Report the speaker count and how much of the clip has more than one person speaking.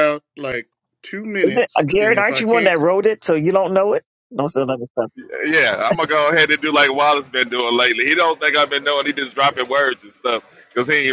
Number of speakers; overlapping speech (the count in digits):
3, about 9%